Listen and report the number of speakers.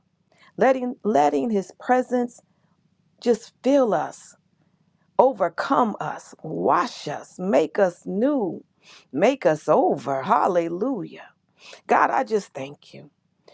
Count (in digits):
1